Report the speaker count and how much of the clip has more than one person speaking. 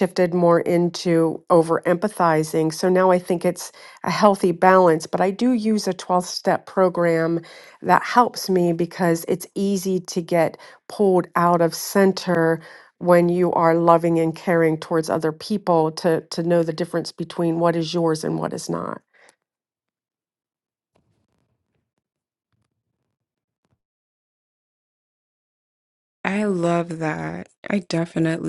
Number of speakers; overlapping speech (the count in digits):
2, no overlap